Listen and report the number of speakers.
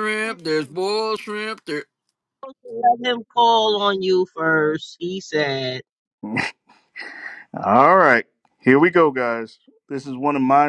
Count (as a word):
three